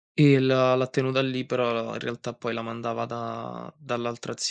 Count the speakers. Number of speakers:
1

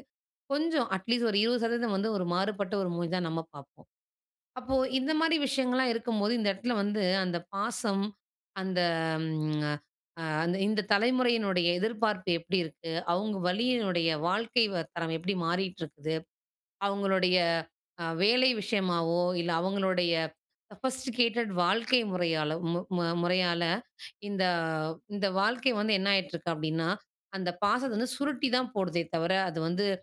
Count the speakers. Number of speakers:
1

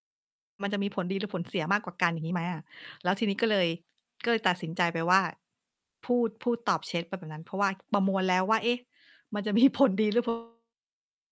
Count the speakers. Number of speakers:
1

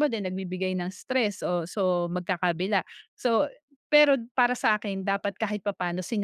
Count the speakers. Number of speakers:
1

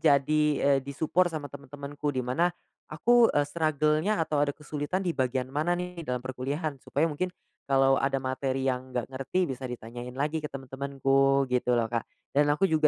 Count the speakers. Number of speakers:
1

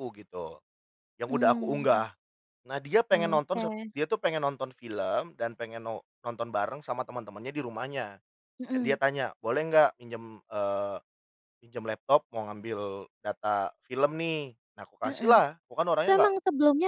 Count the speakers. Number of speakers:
2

